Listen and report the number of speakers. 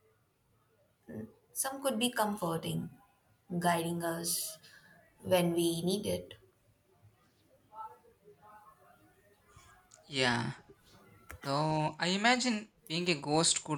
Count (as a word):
two